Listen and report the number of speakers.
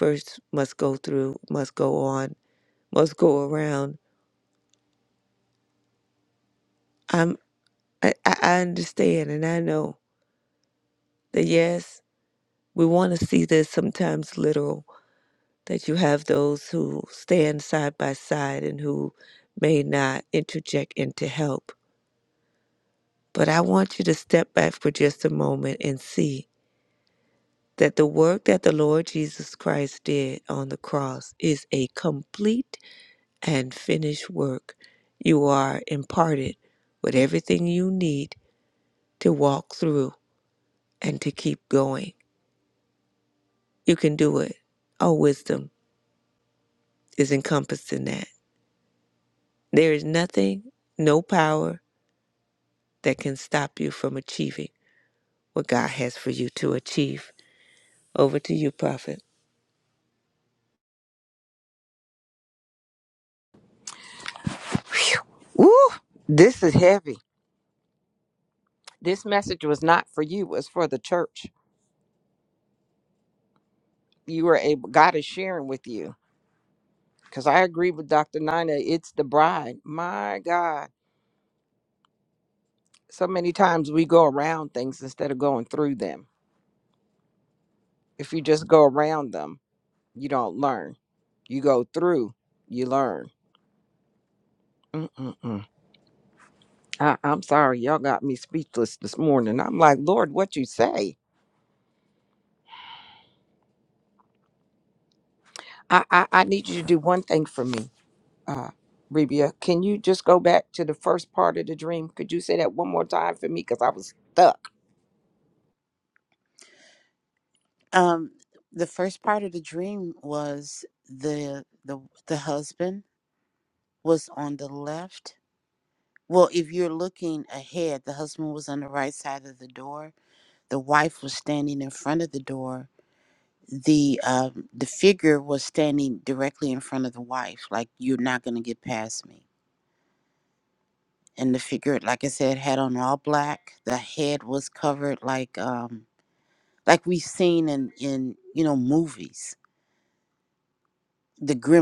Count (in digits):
3